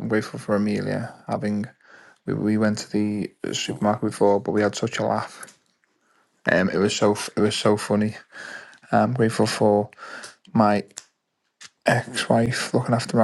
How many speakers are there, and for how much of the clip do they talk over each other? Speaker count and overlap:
one, no overlap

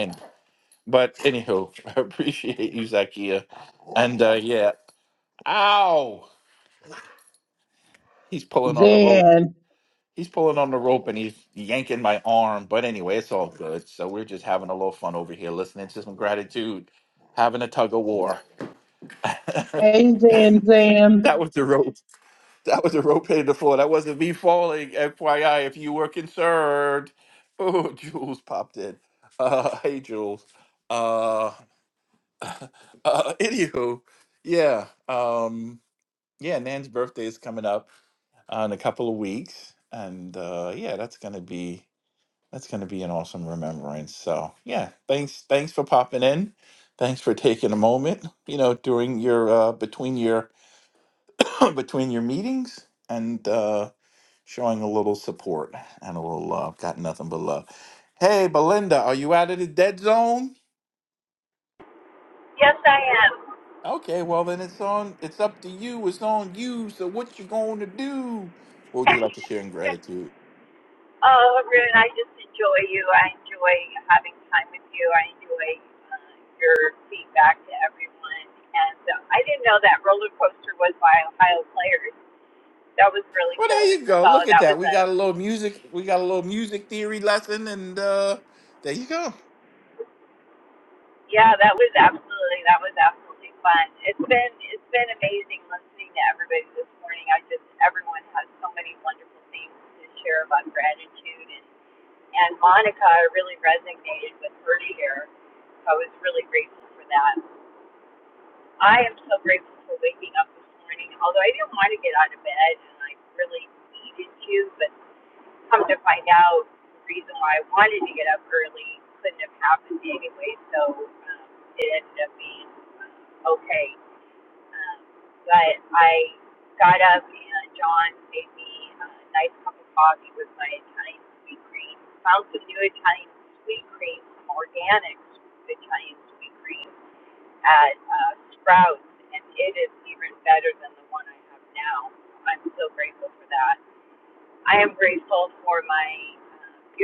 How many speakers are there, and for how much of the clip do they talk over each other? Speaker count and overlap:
three, about 1%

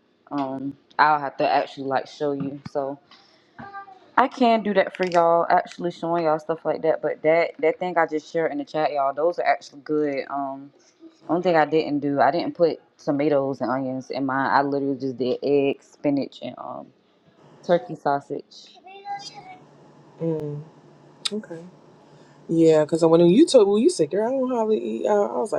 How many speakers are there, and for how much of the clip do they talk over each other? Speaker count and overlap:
two, no overlap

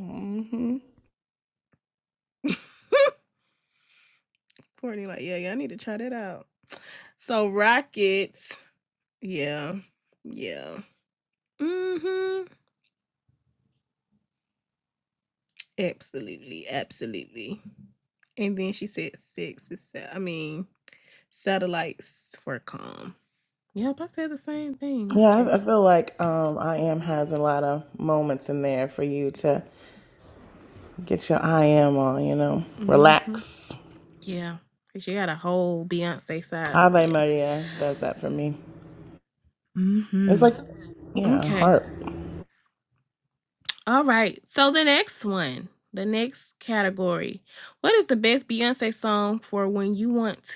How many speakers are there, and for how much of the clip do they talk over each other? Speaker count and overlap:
two, about 4%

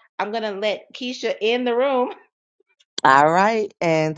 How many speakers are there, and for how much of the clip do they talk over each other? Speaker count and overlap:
two, no overlap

